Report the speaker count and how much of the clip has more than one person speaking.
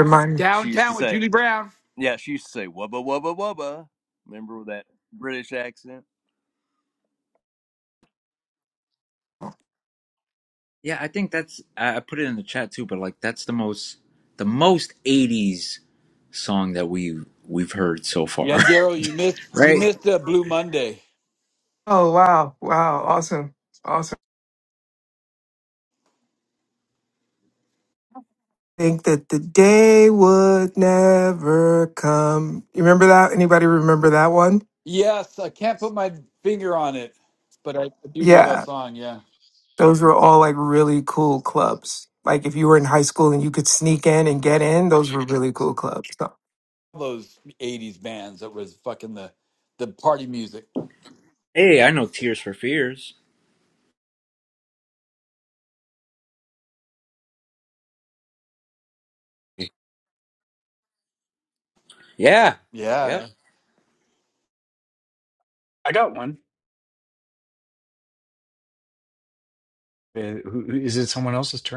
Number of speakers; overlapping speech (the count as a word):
five, about 3%